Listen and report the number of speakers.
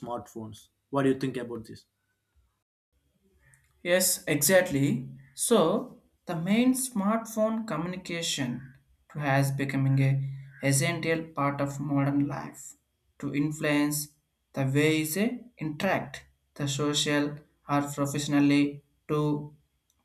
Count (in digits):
2